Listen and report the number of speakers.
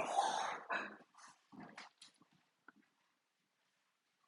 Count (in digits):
0